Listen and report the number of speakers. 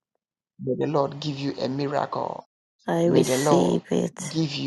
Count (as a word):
two